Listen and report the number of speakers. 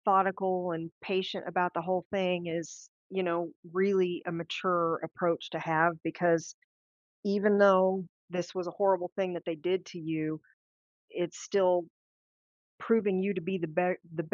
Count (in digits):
1